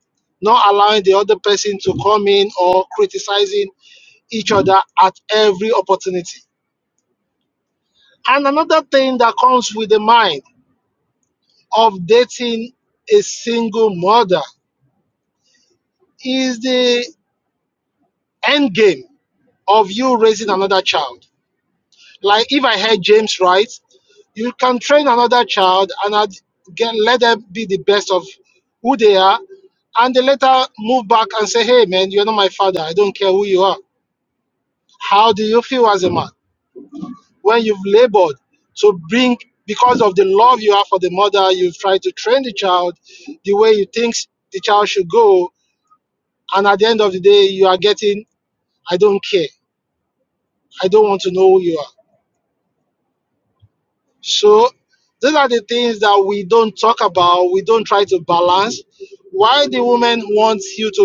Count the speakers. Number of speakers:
one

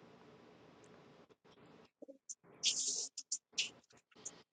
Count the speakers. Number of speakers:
zero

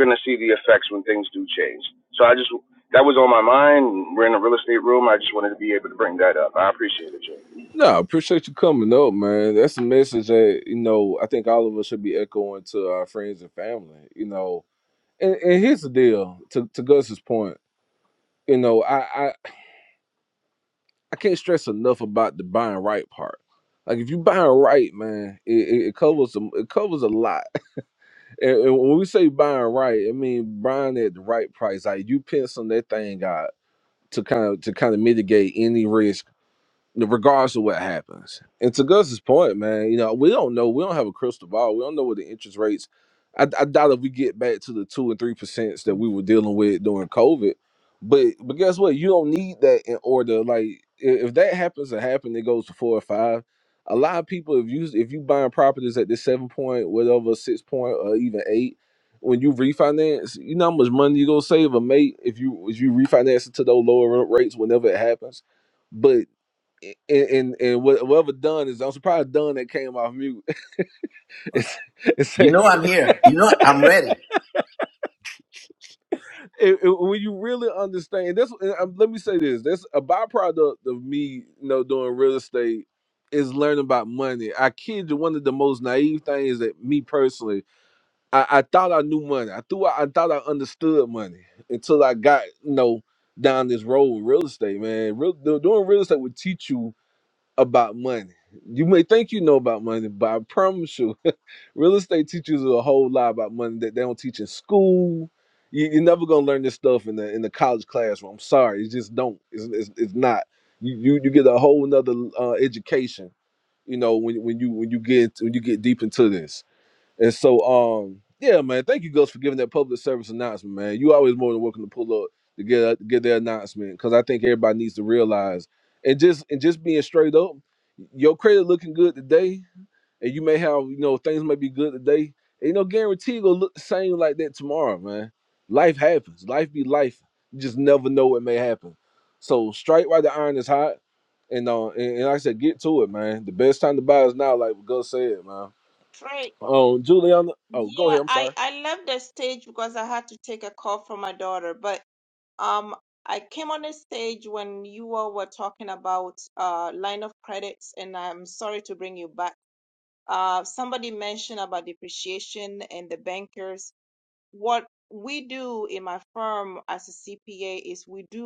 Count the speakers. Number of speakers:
four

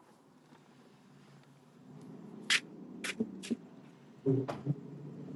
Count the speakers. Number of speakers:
zero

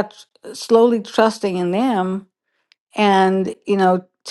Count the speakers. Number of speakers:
one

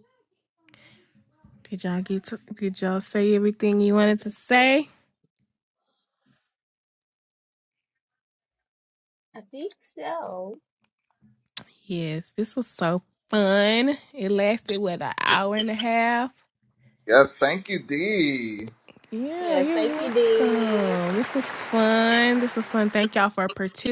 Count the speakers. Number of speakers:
three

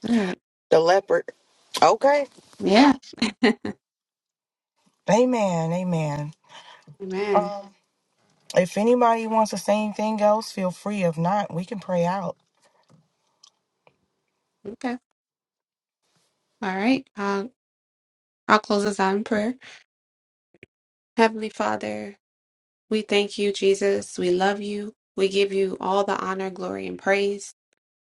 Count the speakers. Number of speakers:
two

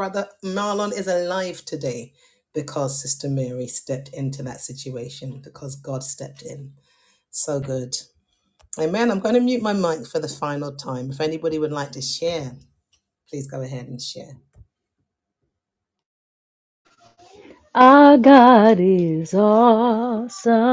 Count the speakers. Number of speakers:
two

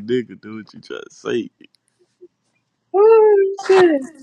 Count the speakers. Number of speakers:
two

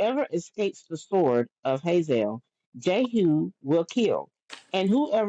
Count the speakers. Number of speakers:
one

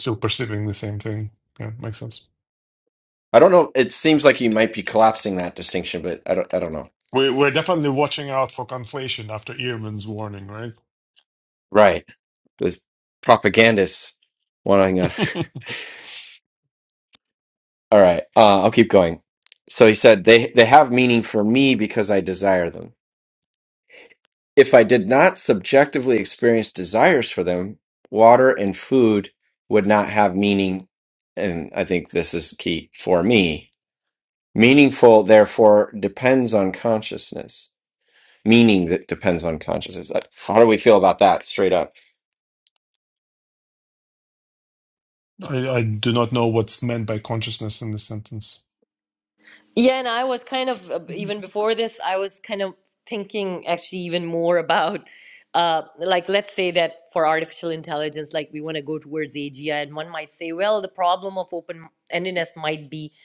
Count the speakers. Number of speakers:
three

